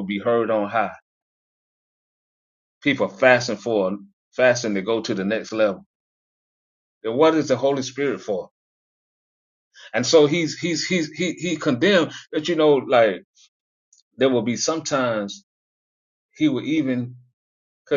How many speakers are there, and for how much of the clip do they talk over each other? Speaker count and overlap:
1, no overlap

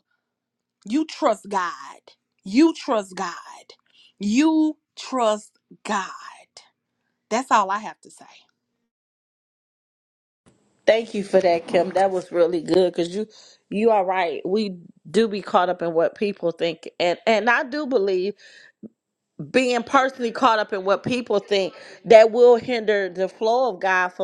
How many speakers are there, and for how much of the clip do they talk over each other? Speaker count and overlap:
2, no overlap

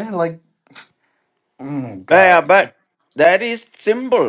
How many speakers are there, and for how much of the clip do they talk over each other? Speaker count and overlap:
2, about 8%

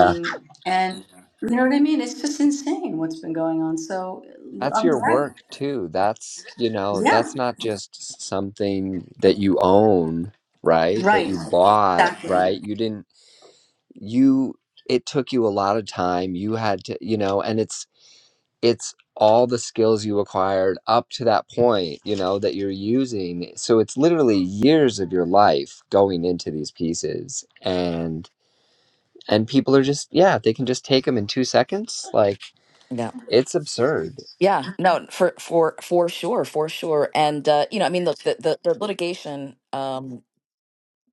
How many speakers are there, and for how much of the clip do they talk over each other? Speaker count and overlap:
3, about 5%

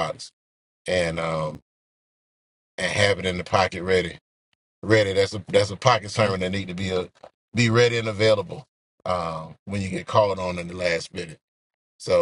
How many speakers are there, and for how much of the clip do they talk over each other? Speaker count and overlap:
1, no overlap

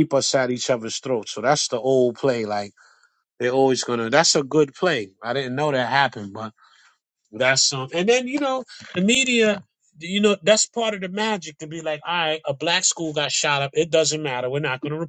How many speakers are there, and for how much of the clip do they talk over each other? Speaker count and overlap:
1, no overlap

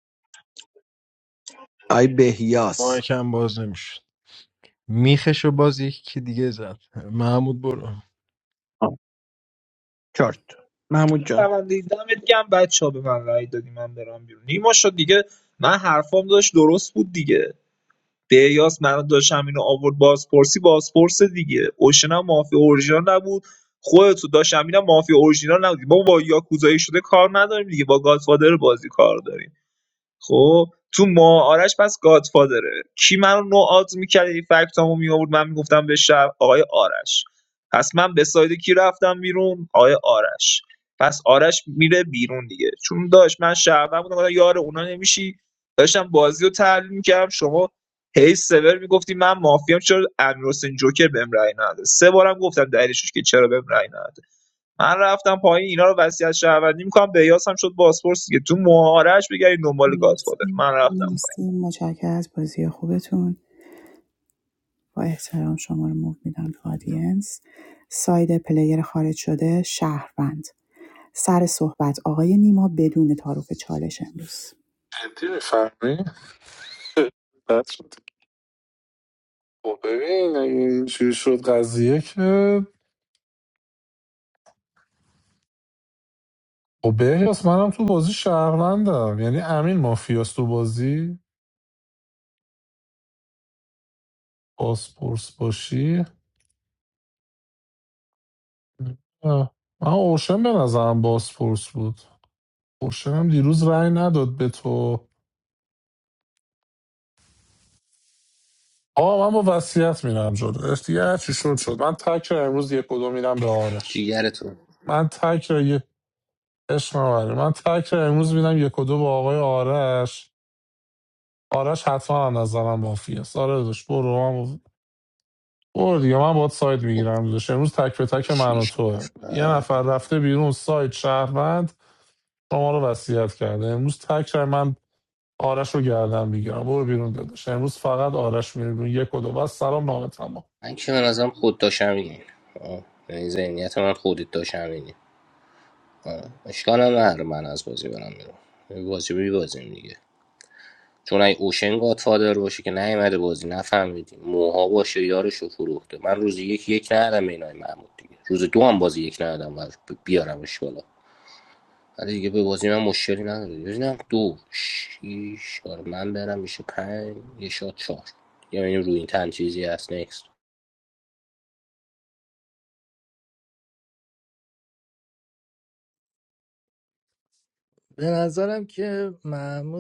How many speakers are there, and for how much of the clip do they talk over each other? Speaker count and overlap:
7, about 2%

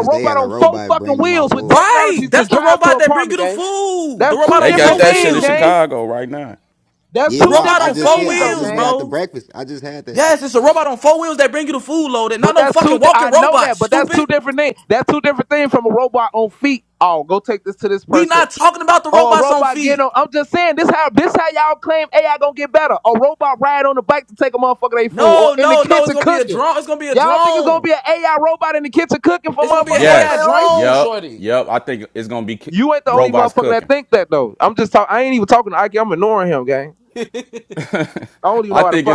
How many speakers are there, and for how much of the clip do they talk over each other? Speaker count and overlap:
4, about 39%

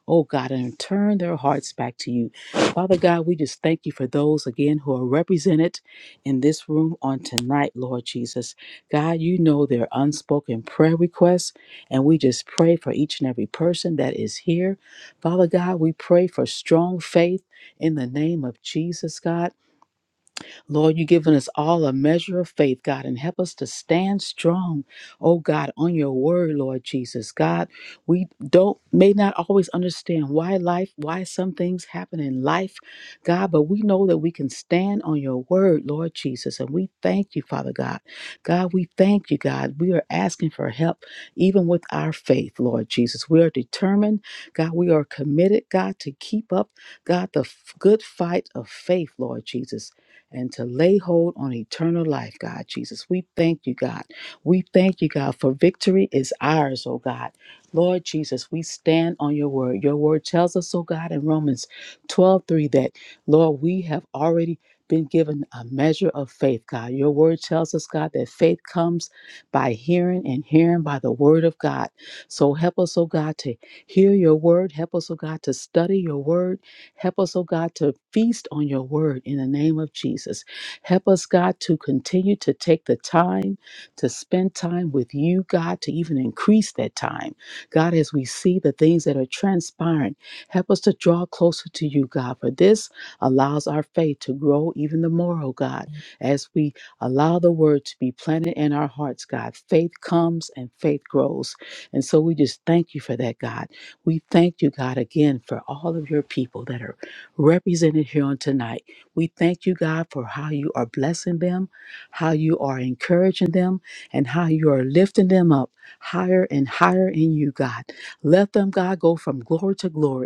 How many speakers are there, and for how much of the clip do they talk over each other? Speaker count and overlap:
1, no overlap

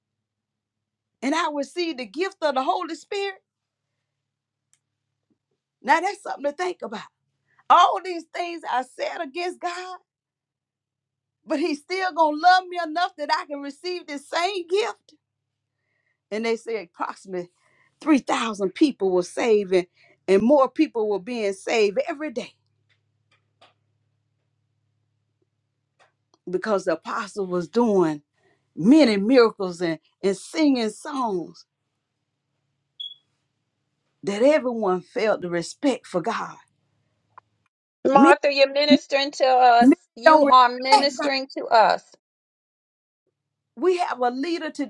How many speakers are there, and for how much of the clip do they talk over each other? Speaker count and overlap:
2, about 3%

